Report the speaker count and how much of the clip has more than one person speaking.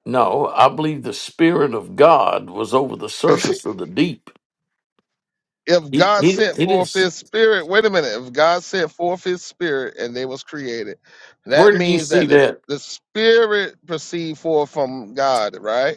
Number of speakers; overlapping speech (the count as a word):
two, about 16%